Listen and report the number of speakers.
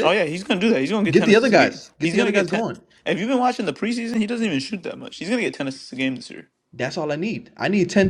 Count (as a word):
two